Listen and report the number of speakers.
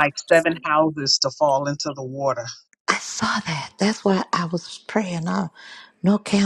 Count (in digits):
2